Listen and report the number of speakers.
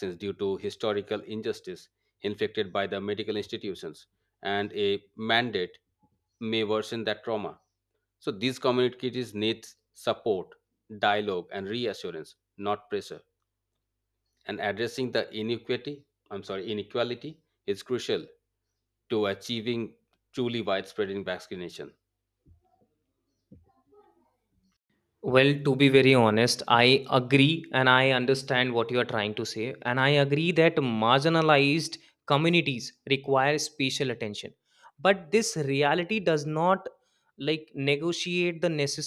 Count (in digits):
2